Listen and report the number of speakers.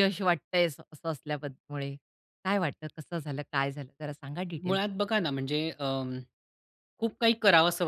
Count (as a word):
two